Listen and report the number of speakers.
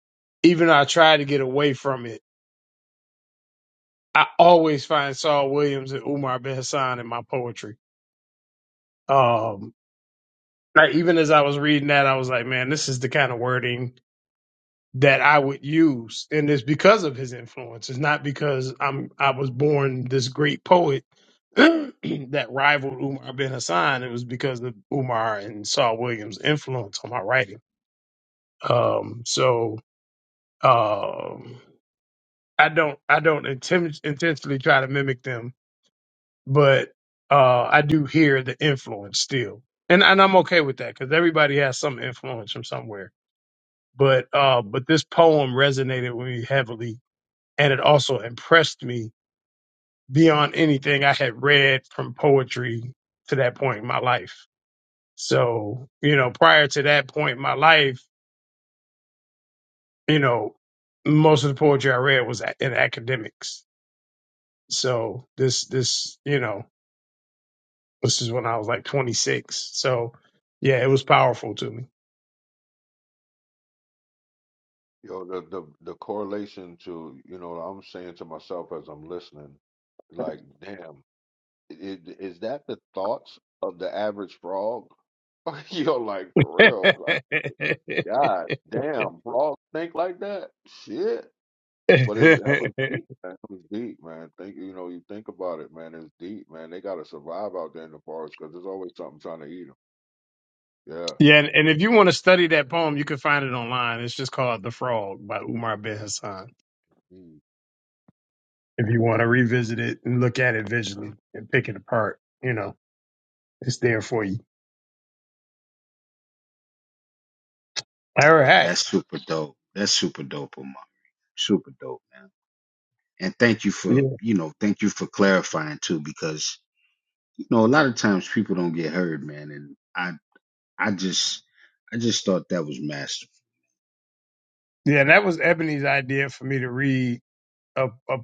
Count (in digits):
3